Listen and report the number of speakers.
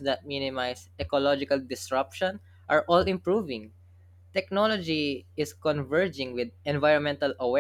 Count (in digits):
1